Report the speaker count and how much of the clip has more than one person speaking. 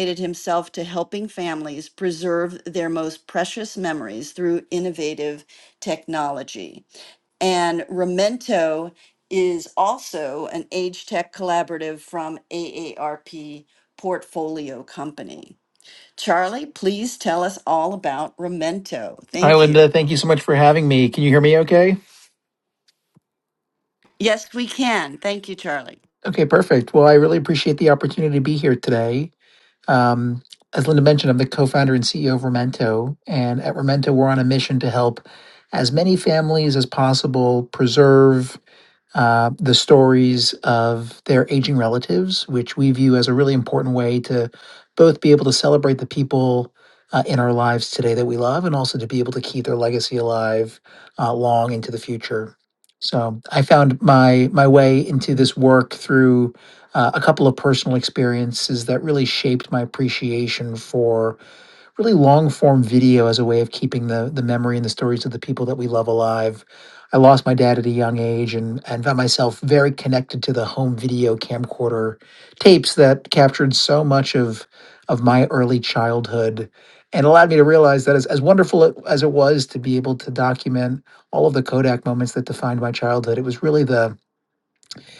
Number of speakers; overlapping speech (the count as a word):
two, about 1%